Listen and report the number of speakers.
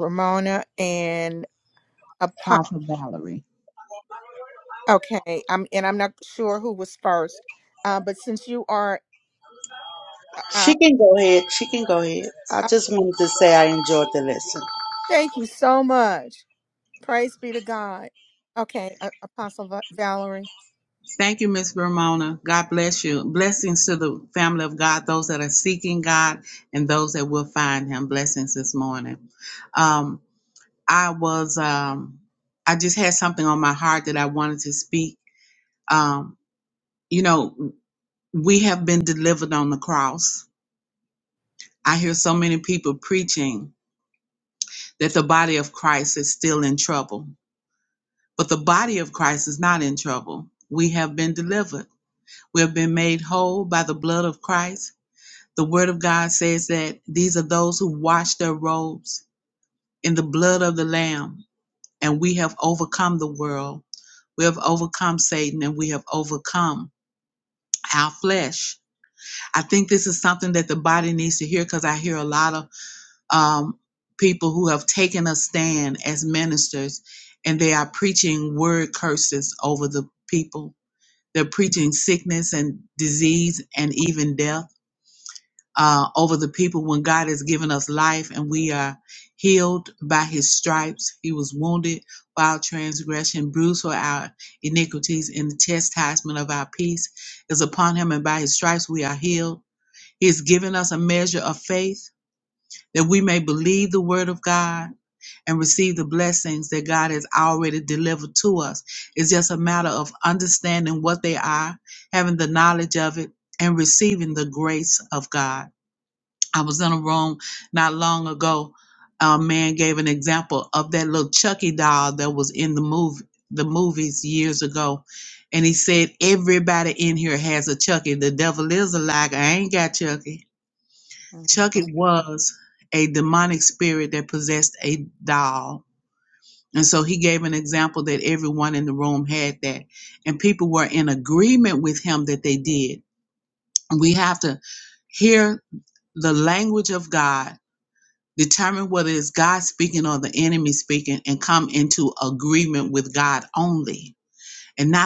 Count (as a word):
three